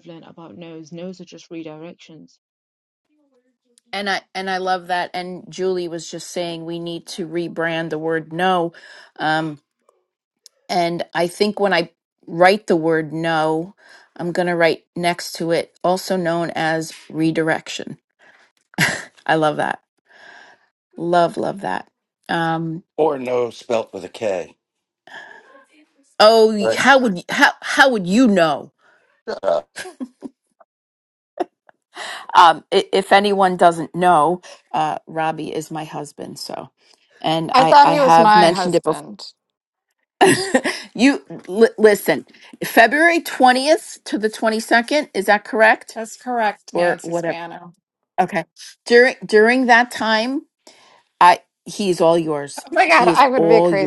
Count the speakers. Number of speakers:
four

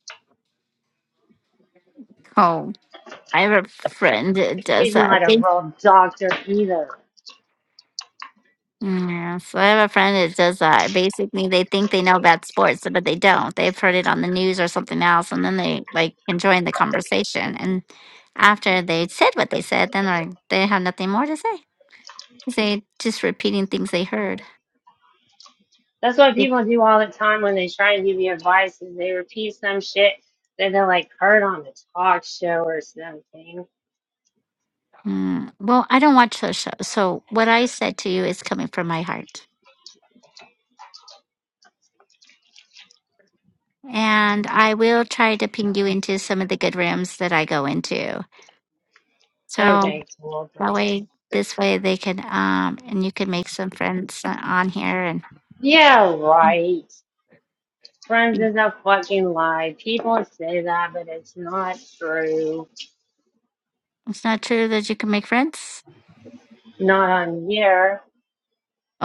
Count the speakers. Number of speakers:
two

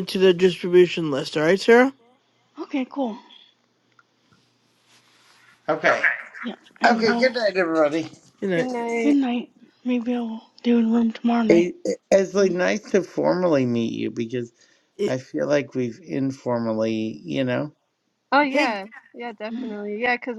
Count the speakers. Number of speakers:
four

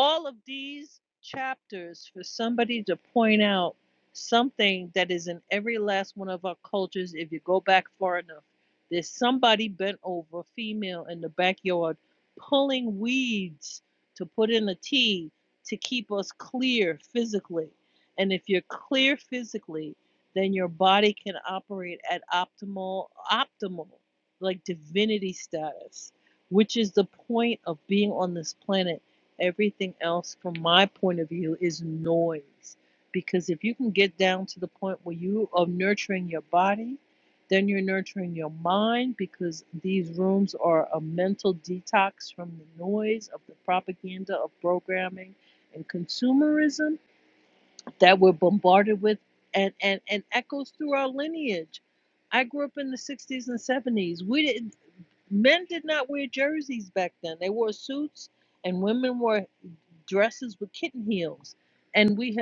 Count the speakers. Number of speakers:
one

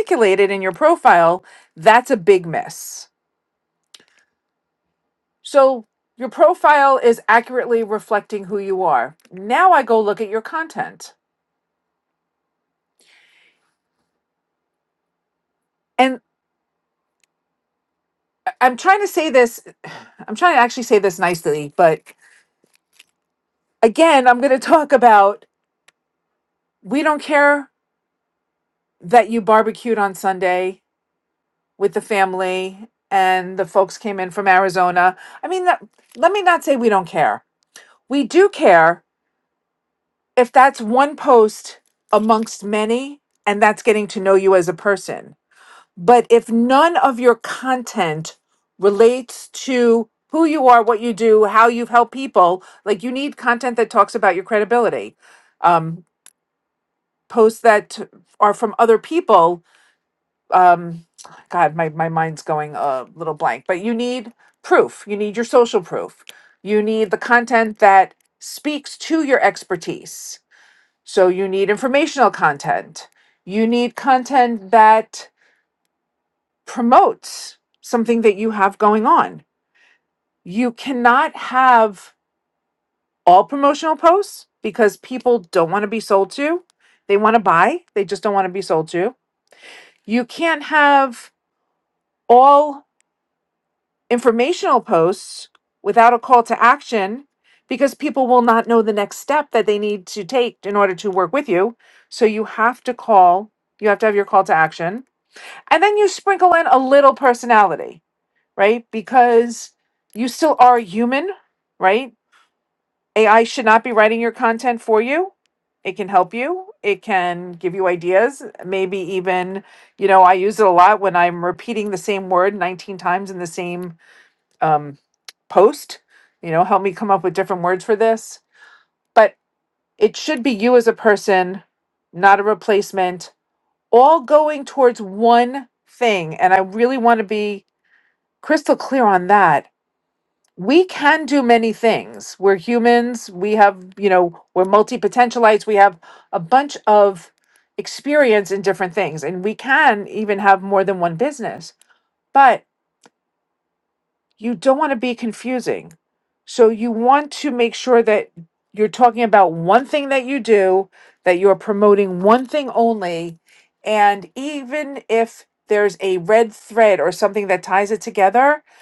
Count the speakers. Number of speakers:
one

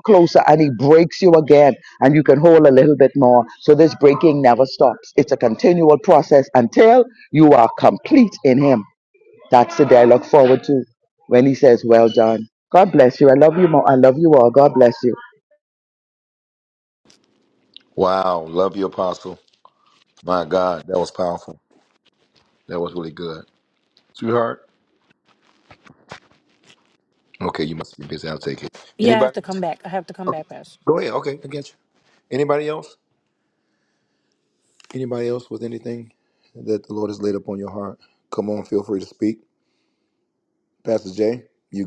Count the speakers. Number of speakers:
three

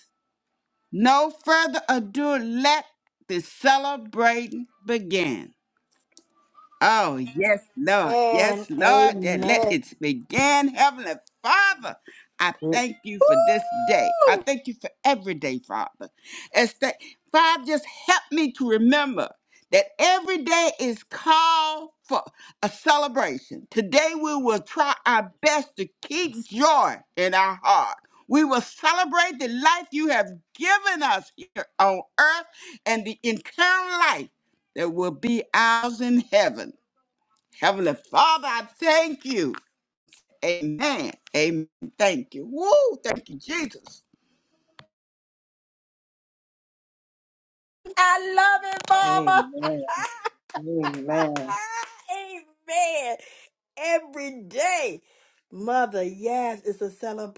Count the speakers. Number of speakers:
three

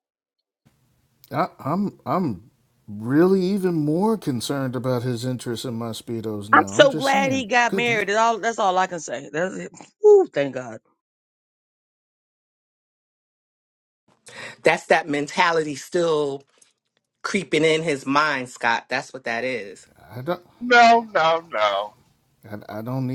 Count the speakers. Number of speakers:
four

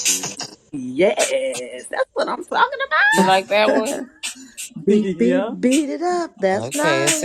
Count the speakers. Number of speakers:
three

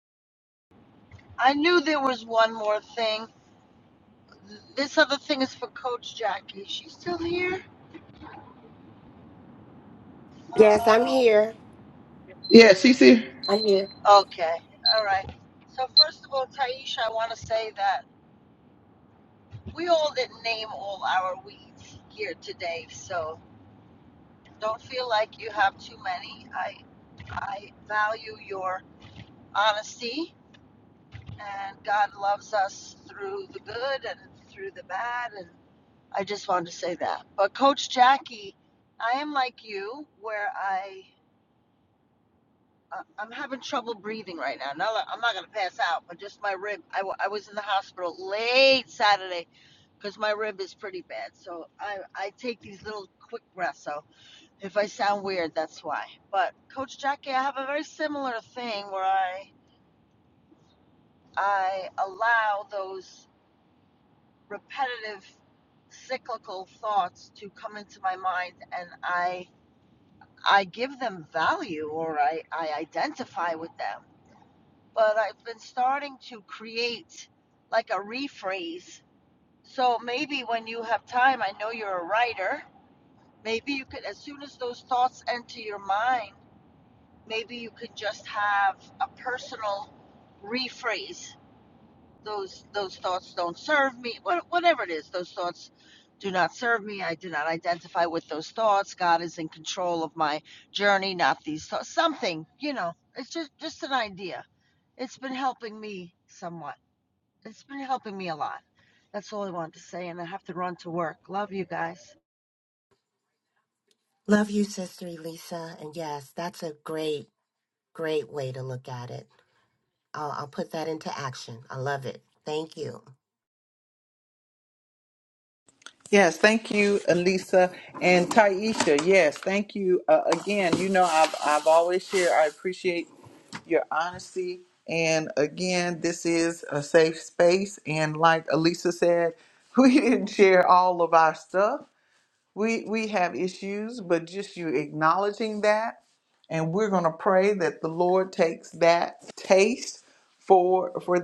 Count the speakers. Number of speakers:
three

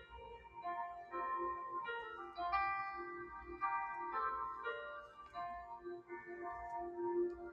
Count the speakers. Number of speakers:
zero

